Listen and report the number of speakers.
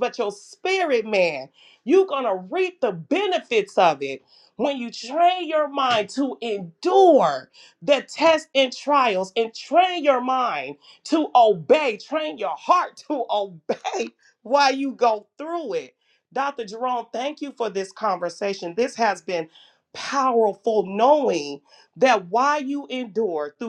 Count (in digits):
1